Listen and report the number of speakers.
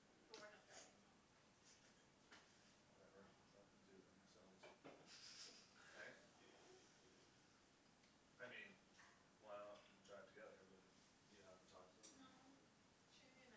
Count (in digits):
2